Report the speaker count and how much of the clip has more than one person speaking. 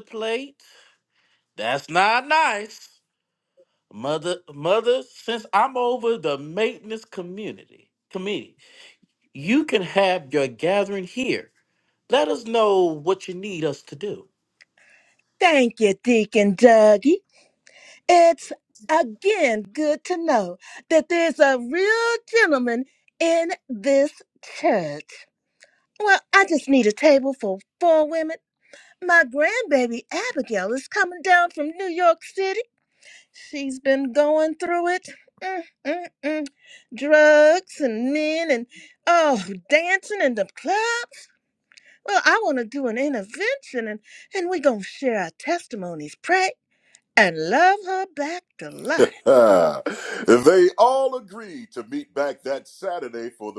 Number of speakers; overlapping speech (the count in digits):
3, no overlap